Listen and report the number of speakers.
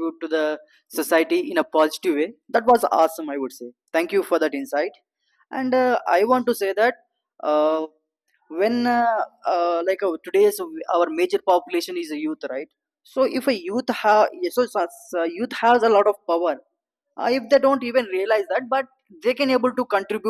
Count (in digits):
1